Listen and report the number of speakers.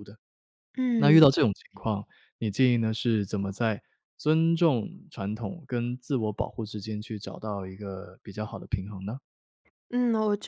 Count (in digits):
2